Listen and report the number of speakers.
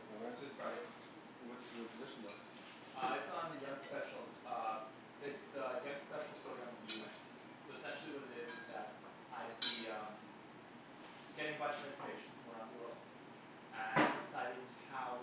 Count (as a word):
two